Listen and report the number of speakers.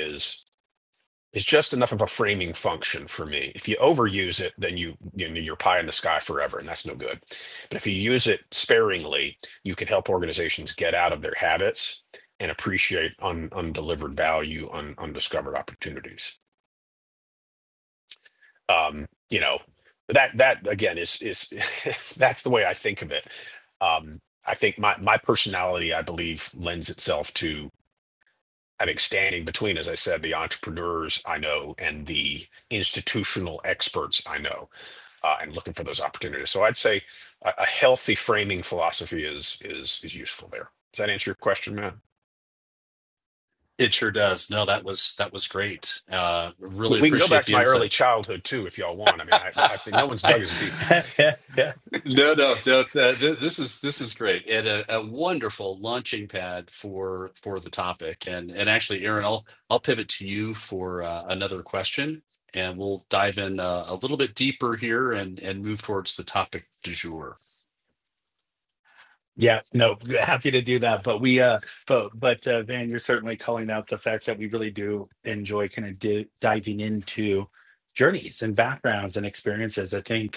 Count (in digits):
3